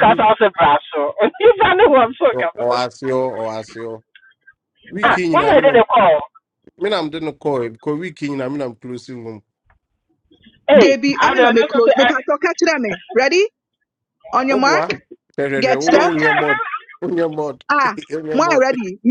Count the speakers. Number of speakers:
3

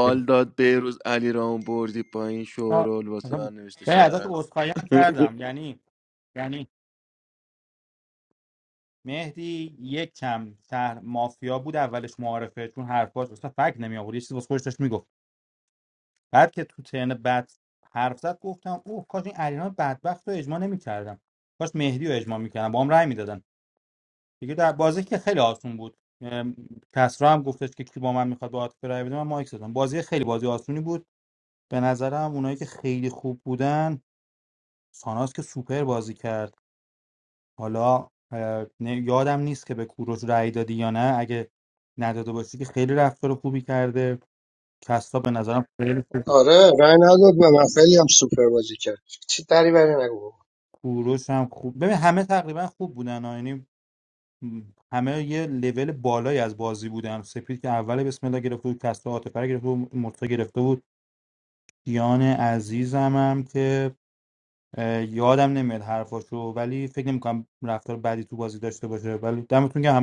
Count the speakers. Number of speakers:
3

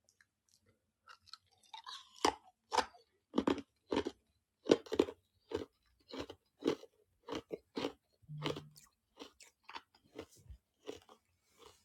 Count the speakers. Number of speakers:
0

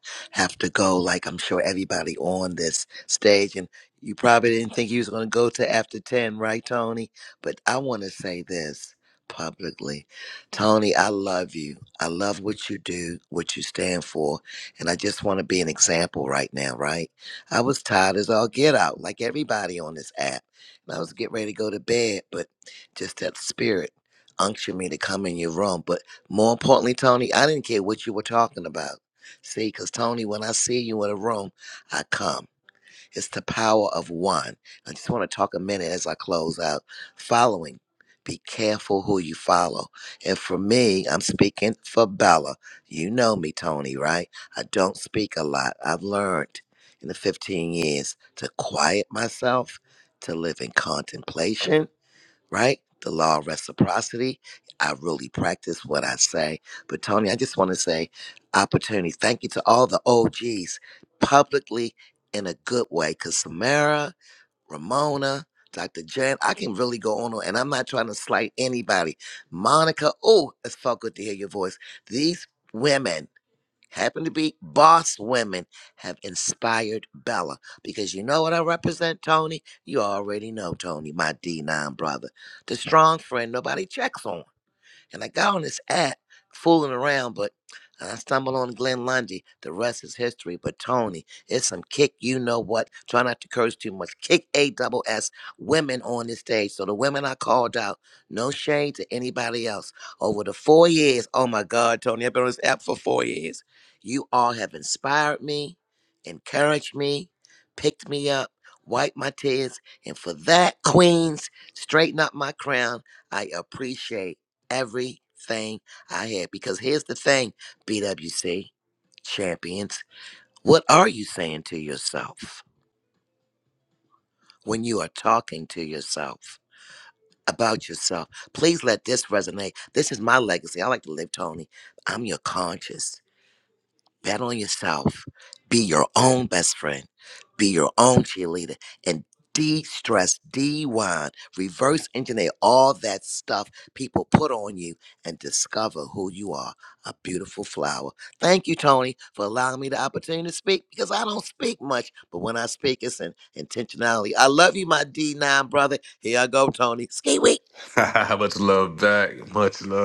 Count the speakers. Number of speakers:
2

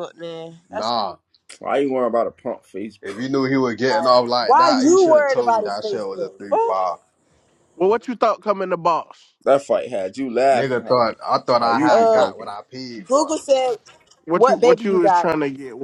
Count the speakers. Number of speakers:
4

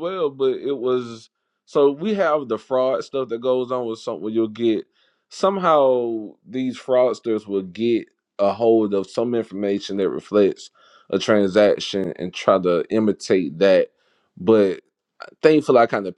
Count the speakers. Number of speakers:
1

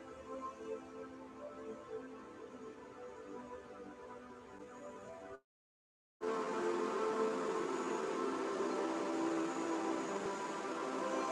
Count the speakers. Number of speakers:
0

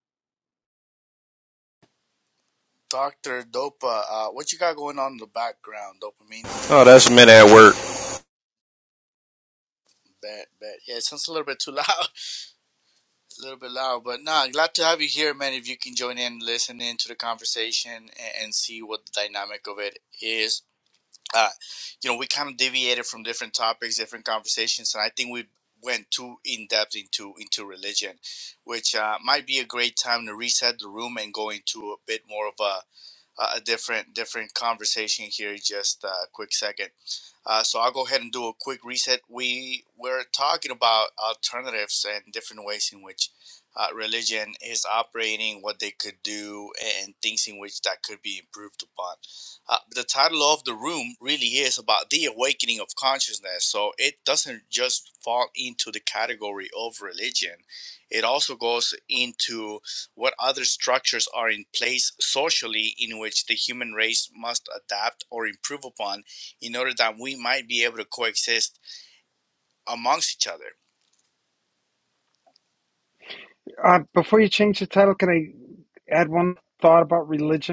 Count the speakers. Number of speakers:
3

